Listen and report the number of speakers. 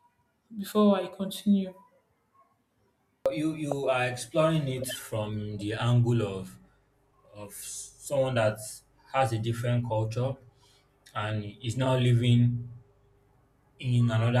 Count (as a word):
two